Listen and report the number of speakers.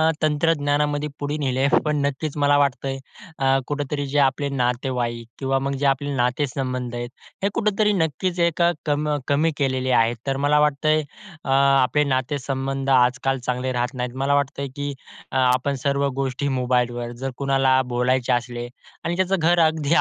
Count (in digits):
1